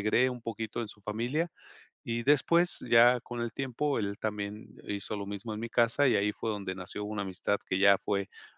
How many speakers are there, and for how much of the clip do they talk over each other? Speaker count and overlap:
1, no overlap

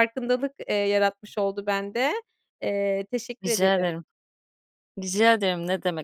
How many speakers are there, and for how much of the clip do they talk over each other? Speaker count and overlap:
2, about 8%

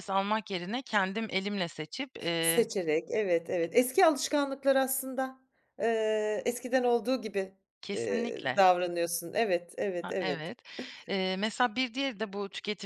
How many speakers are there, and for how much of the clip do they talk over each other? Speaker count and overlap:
2, about 8%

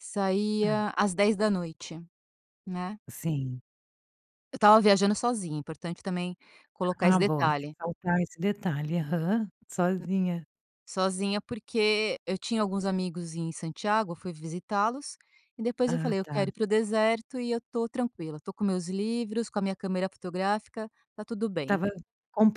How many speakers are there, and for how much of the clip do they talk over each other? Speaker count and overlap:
2, about 8%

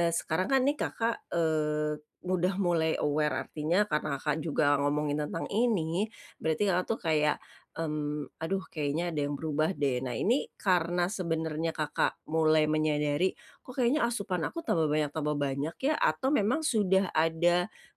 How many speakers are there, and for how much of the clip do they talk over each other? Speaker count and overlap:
1, no overlap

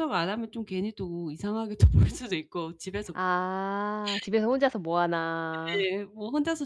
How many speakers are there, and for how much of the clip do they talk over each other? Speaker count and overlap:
2, about 1%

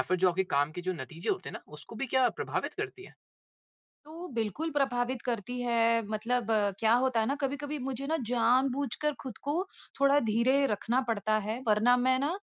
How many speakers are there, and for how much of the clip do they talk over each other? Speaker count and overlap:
2, no overlap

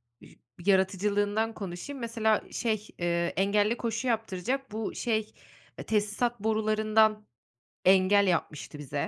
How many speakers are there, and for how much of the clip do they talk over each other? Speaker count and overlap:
1, no overlap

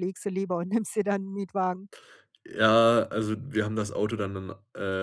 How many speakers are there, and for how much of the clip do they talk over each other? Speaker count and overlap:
2, no overlap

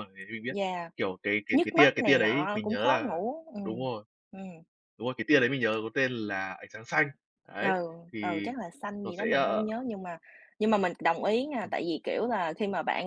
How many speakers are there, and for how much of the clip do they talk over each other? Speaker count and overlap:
2, about 23%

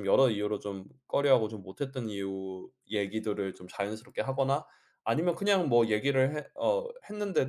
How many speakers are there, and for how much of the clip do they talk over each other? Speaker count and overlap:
1, no overlap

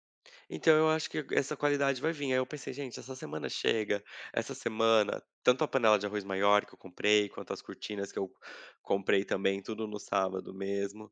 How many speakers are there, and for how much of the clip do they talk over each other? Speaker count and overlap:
1, no overlap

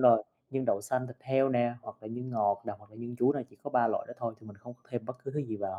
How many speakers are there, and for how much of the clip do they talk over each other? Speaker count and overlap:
1, no overlap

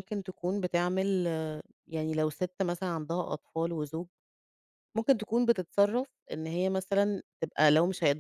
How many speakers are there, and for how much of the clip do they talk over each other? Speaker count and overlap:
1, no overlap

